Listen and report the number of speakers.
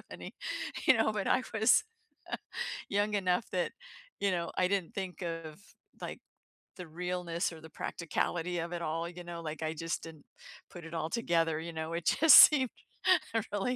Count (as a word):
one